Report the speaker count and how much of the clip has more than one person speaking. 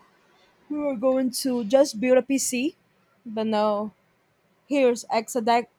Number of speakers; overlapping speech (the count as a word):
one, no overlap